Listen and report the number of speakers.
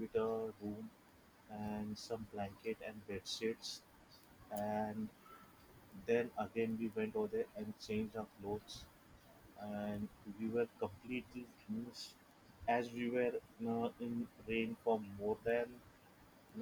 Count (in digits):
1